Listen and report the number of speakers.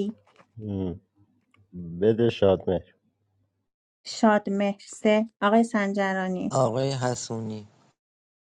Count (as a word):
three